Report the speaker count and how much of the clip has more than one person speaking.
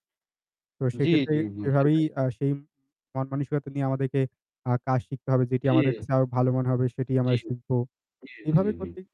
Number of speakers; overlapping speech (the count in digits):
2, about 23%